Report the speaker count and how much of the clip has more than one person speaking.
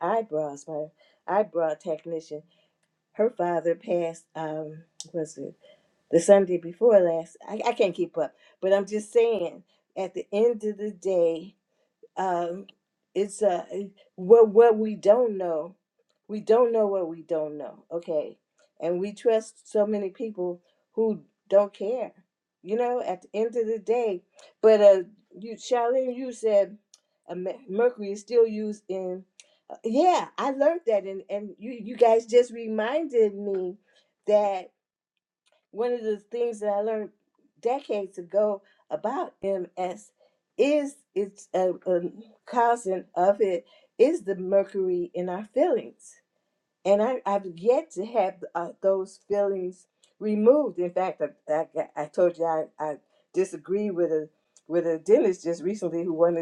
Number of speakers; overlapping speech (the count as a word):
one, no overlap